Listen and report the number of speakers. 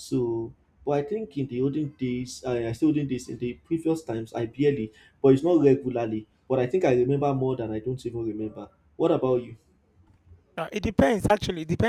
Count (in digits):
2